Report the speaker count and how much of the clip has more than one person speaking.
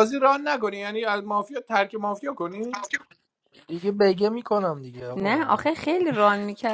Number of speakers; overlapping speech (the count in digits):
3, about 8%